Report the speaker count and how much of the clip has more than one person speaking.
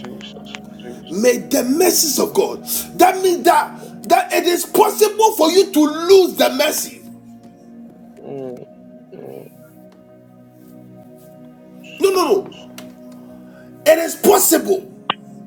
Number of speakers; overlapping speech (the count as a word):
two, about 4%